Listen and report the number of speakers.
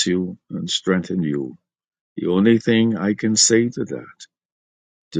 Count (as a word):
one